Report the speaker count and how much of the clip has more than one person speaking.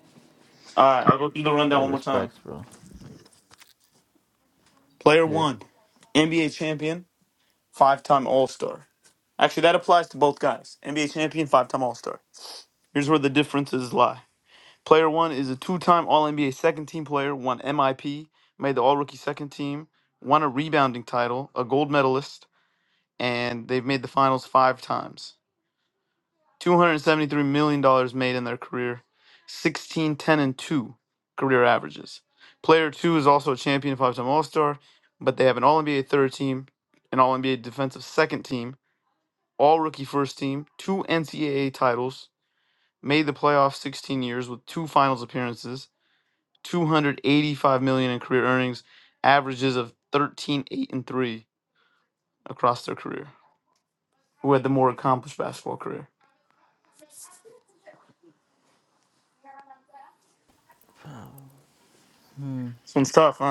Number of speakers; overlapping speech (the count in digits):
2, about 1%